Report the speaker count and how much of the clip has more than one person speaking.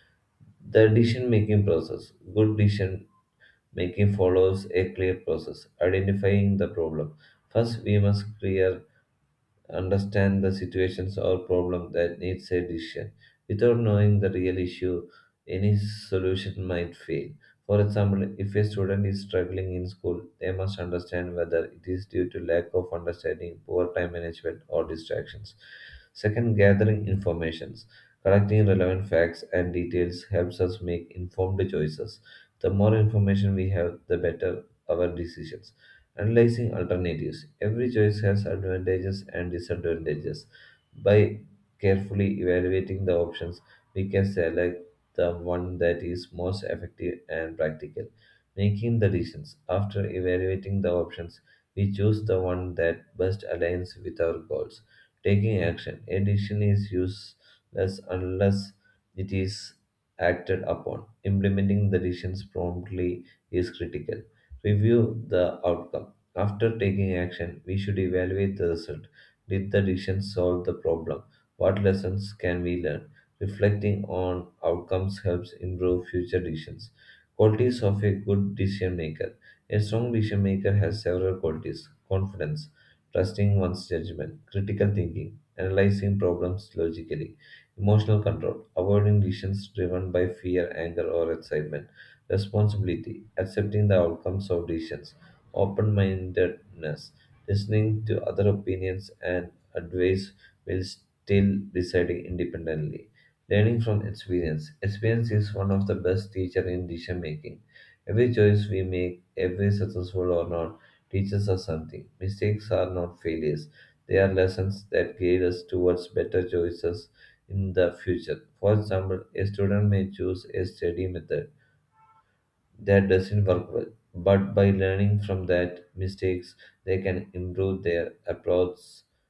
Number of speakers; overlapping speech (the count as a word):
one, no overlap